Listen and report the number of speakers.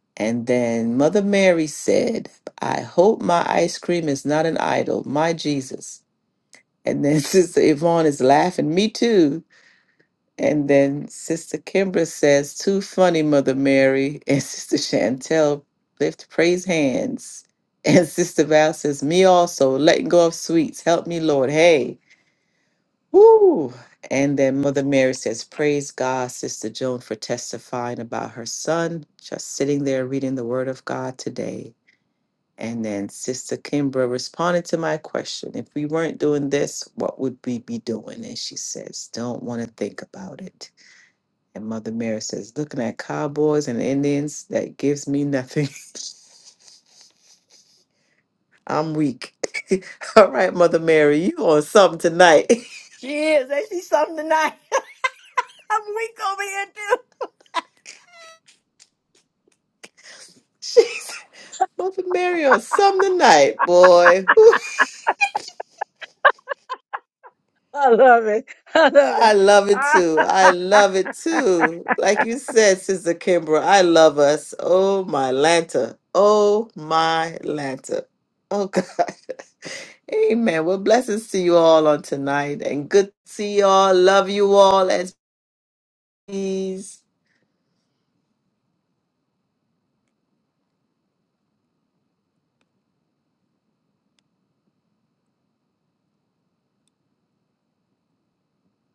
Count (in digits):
3